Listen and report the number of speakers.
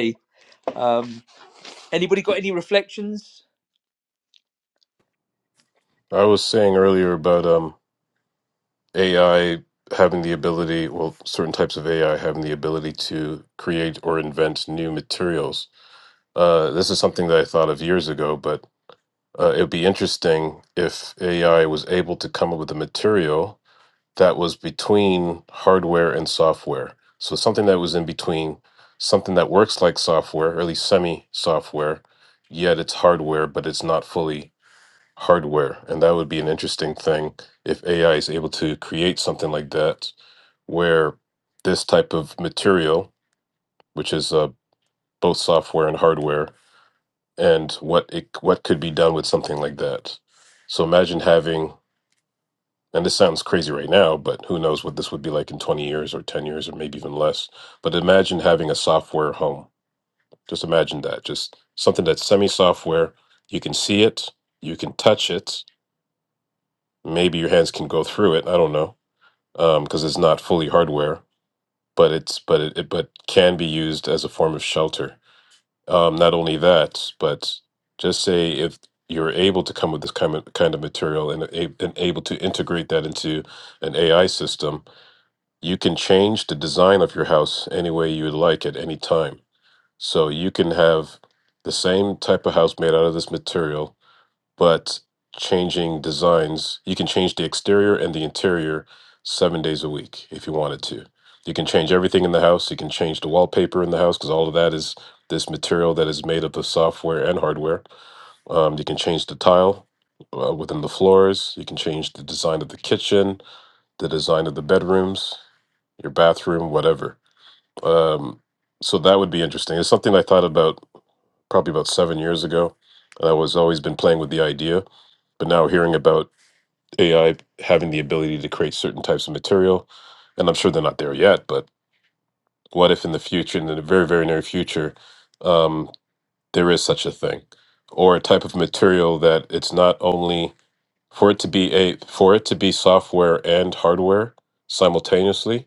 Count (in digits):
2